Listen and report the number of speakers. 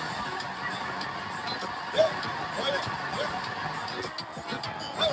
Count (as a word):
zero